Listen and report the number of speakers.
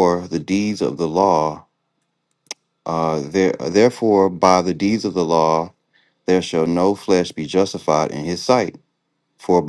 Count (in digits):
1